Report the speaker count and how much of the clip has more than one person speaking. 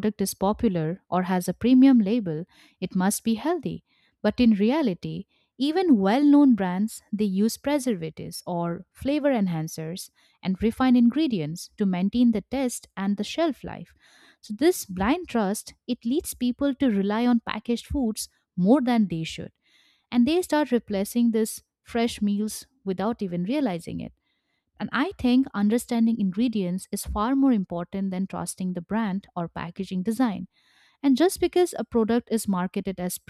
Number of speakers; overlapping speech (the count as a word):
one, no overlap